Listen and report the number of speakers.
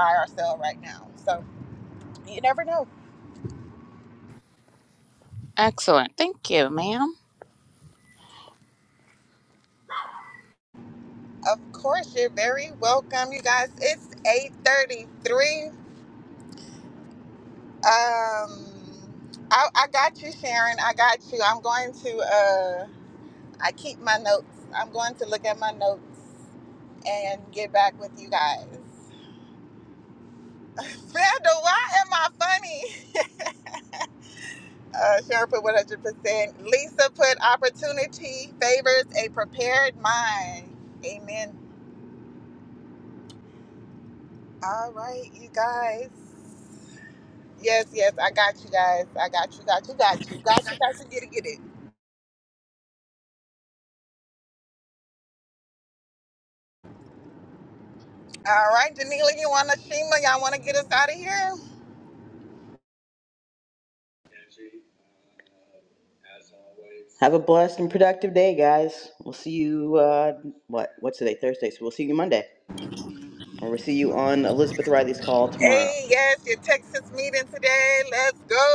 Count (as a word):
three